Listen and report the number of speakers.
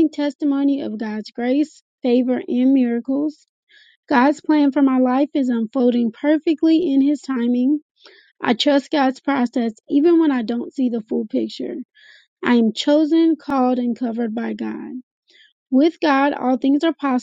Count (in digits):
1